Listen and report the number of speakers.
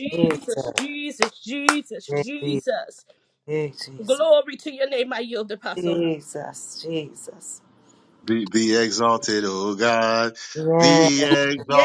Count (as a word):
three